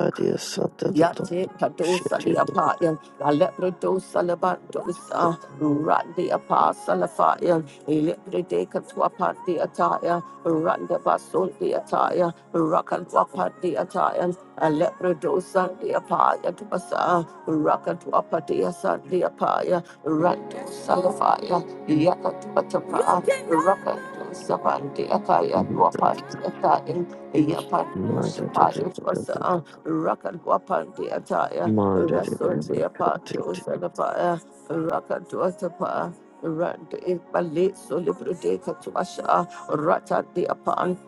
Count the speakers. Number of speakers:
2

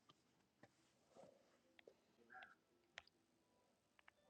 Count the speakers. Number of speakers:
0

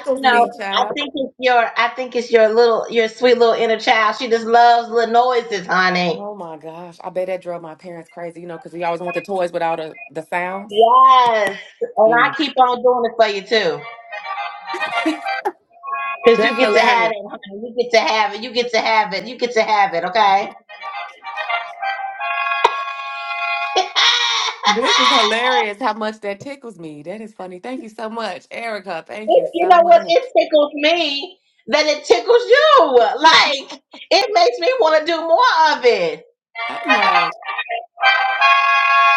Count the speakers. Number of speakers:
2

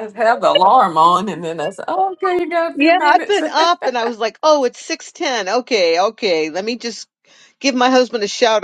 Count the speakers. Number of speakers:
2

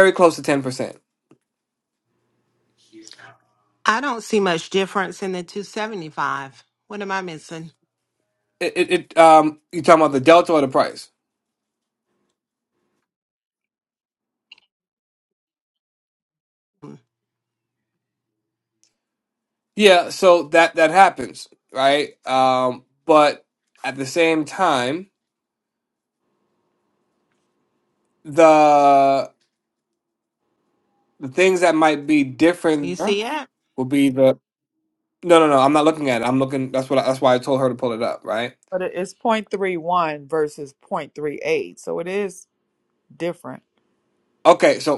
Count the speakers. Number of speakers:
3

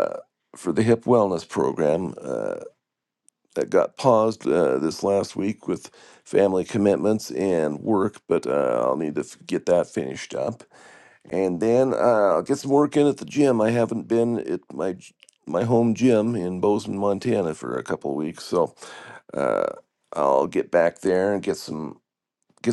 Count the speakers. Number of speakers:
1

